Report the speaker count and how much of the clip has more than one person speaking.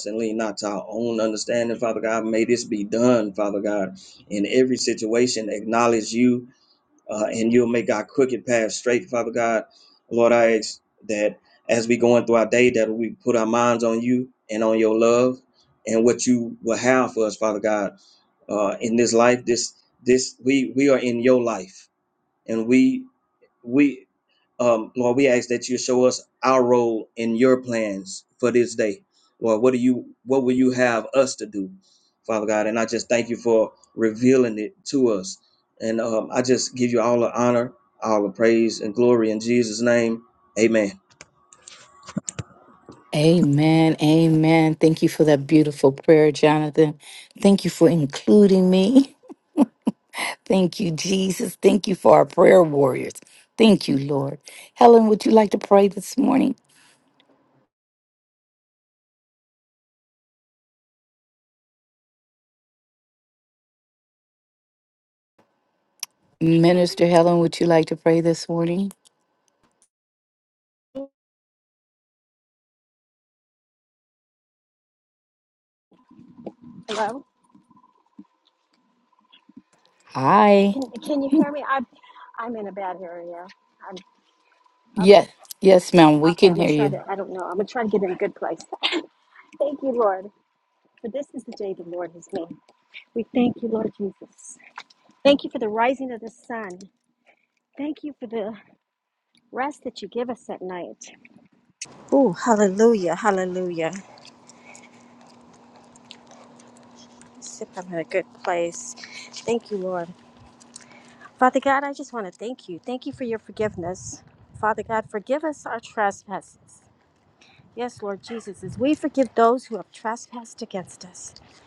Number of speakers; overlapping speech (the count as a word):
three, about 1%